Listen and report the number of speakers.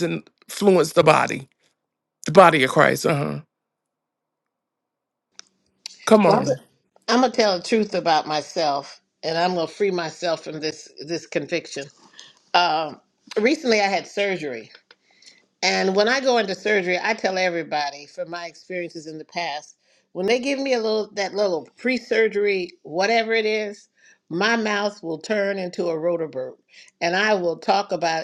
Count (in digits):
2